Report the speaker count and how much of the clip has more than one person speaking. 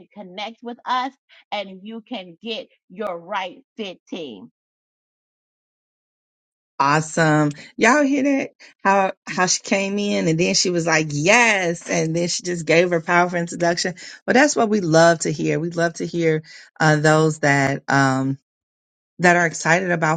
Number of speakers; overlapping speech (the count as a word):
two, no overlap